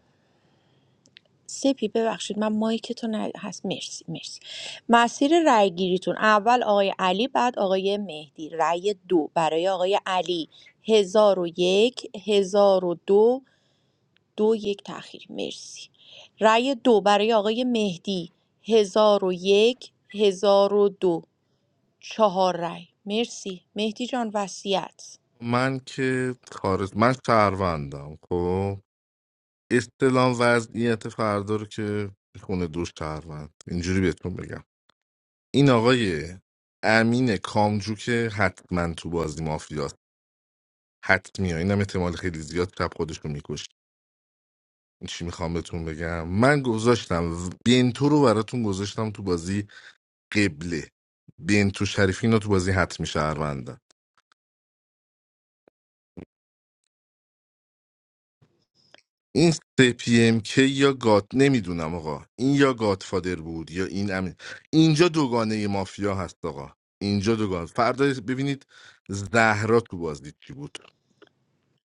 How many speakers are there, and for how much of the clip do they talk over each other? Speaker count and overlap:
two, no overlap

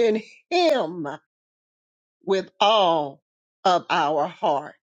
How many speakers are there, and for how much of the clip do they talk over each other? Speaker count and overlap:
one, no overlap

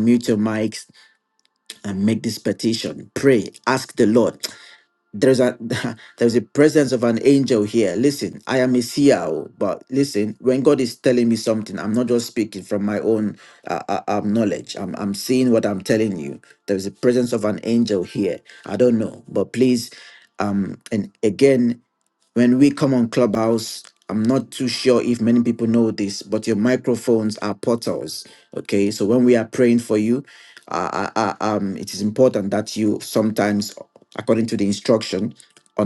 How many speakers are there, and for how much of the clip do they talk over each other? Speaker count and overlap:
one, no overlap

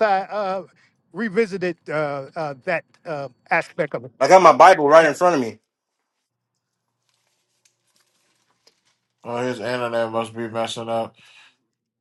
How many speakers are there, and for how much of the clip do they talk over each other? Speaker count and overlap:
three, no overlap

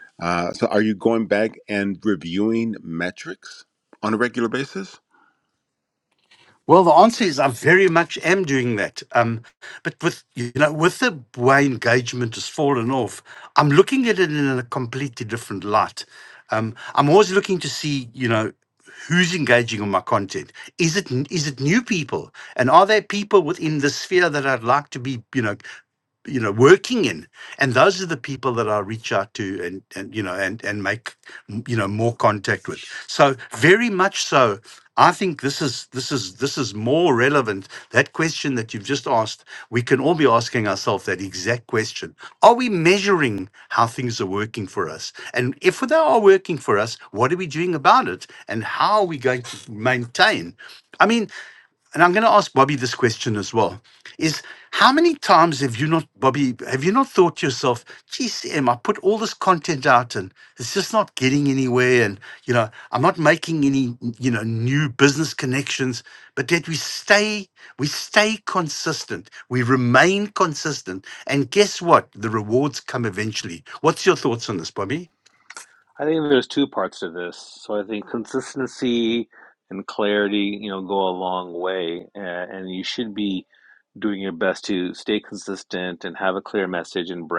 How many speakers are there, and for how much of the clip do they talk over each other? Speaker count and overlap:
three, no overlap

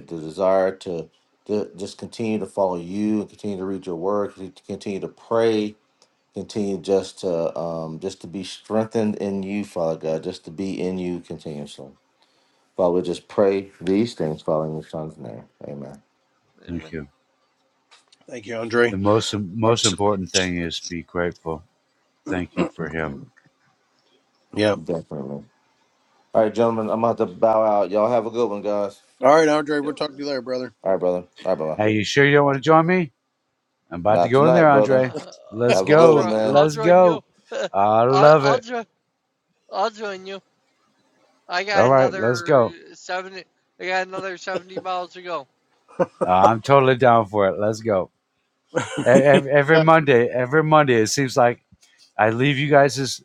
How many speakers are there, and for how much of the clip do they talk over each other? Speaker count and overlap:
four, about 9%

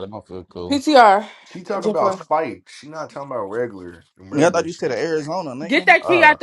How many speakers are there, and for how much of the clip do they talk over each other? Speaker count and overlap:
three, about 29%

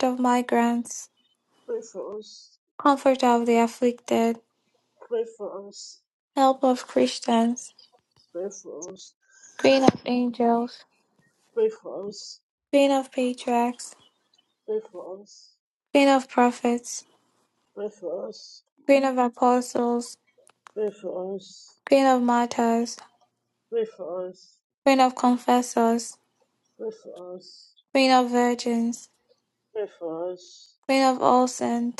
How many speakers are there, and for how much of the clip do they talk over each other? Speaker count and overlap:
two, no overlap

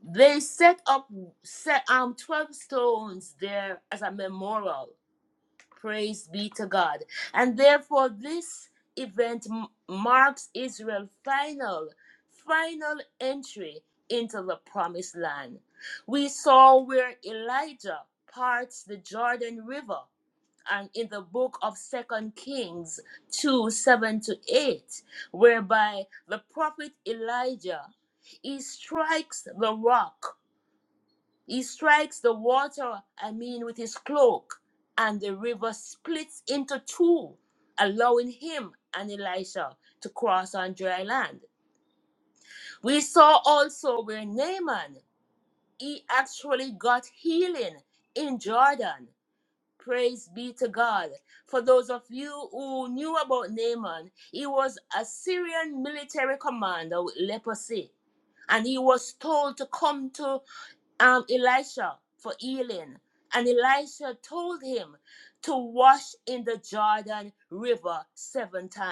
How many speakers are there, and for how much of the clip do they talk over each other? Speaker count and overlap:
one, no overlap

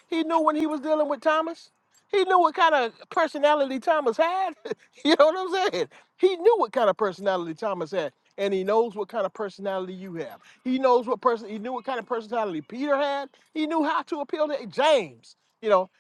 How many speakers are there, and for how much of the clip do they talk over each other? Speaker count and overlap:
one, no overlap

